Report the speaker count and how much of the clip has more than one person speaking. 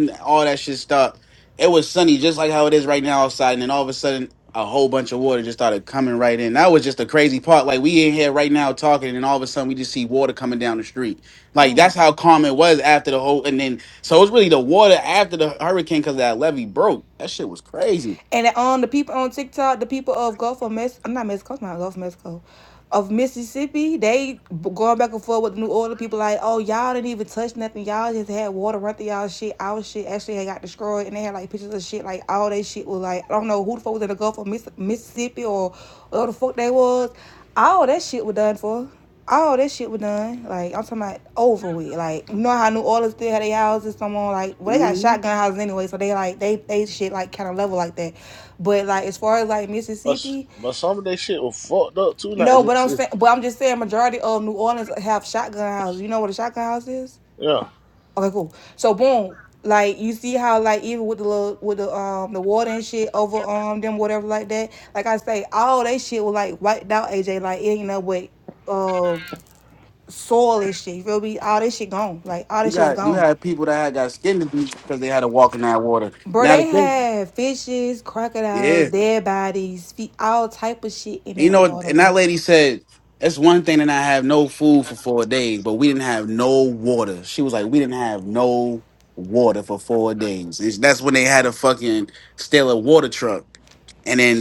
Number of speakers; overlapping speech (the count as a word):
three, about 4%